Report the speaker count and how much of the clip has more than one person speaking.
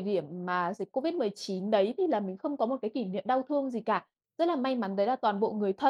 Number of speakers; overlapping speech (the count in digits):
1, no overlap